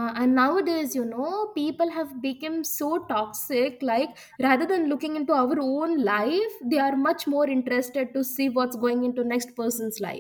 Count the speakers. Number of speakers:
1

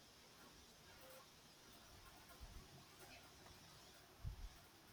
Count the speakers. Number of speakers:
0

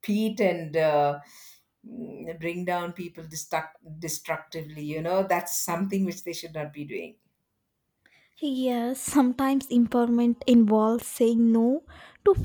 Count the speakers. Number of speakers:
2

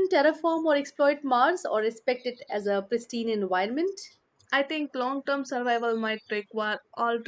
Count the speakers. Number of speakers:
2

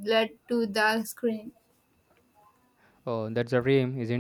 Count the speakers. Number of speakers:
2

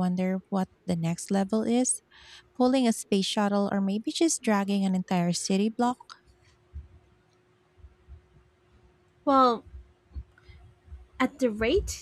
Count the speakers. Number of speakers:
2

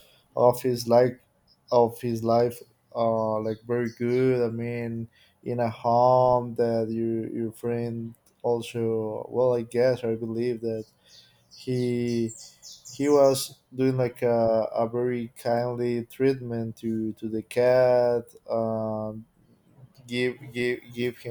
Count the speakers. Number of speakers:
1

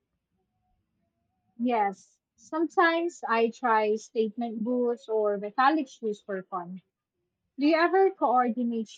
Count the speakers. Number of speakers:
1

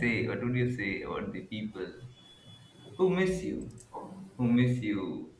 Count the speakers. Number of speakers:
1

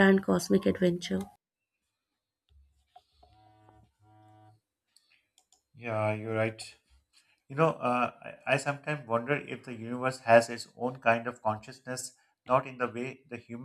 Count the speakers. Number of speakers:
2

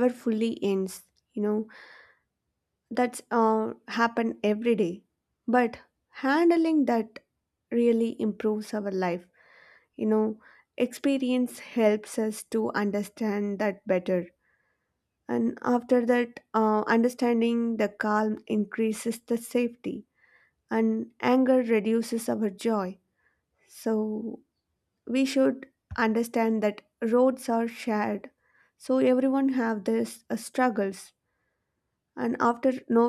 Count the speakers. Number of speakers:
1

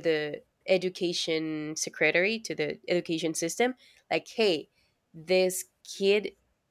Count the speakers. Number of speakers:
1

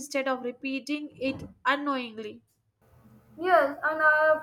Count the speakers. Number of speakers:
2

